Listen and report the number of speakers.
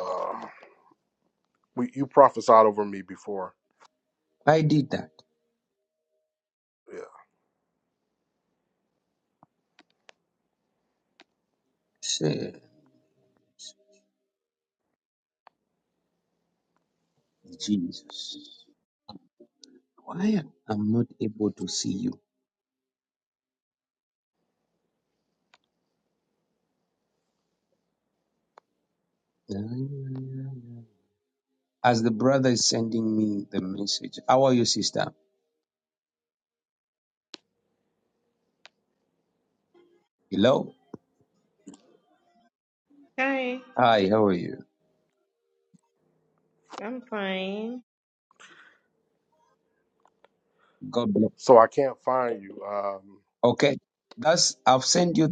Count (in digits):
3